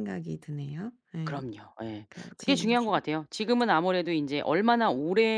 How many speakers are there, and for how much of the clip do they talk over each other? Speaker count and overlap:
two, about 13%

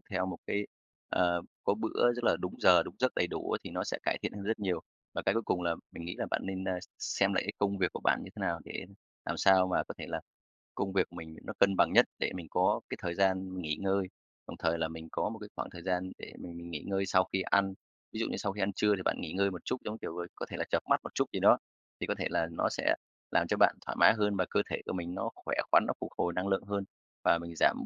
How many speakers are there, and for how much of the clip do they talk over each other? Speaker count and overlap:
one, no overlap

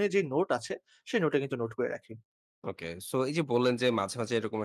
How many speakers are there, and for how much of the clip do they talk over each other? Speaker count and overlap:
two, no overlap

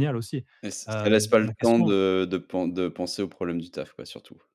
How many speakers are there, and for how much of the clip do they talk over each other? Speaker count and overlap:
two, about 24%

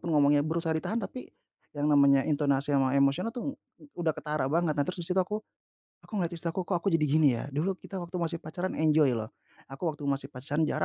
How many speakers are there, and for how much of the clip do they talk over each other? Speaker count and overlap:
one, no overlap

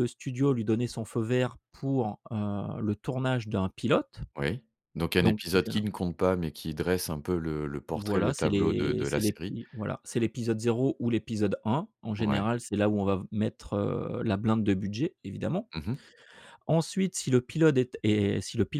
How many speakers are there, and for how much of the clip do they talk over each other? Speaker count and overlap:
two, about 13%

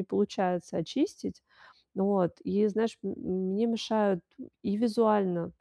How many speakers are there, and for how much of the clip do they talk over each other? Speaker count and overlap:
one, no overlap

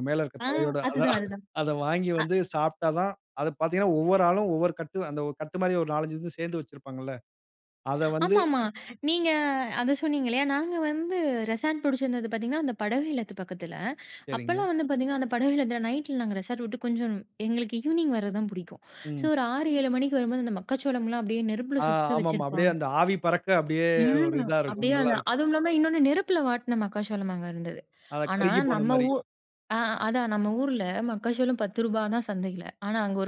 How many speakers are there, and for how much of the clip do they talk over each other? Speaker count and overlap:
two, about 13%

